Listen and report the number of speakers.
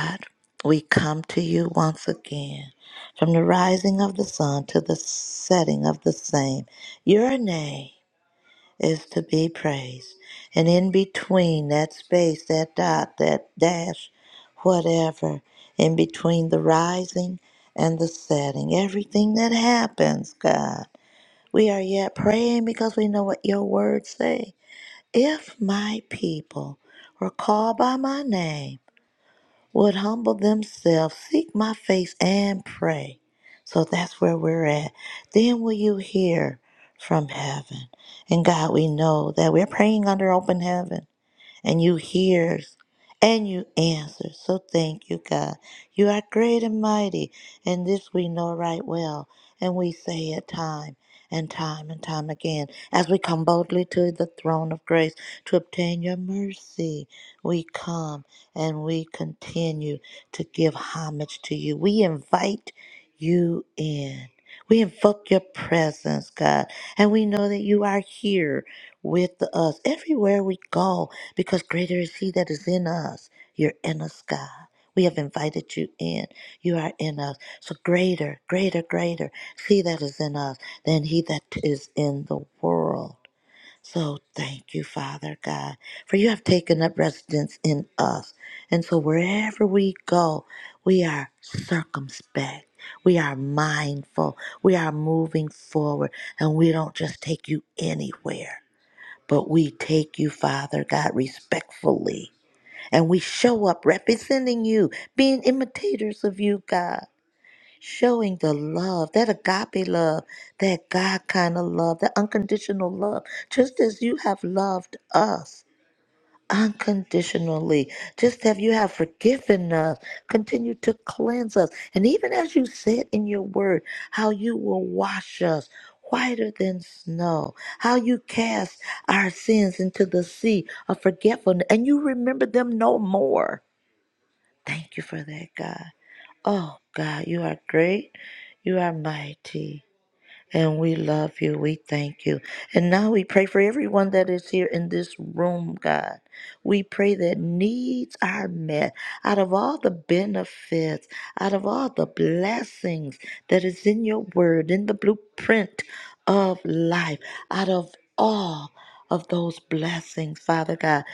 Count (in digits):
1